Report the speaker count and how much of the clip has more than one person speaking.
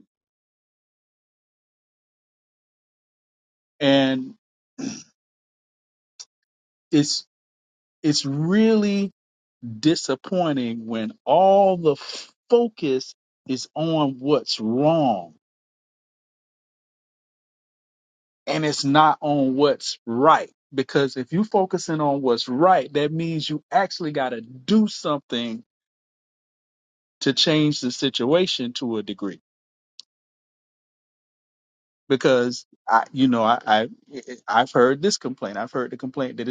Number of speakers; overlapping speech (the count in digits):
1, no overlap